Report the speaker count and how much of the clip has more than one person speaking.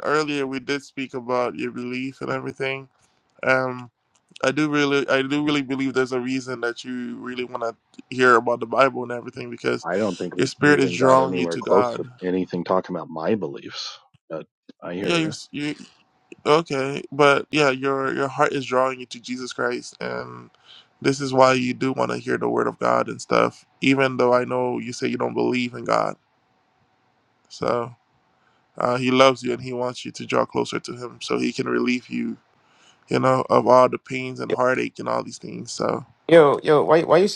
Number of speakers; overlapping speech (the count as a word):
three, about 6%